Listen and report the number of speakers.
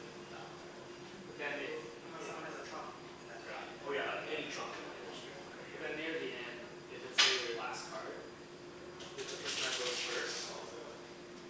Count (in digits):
3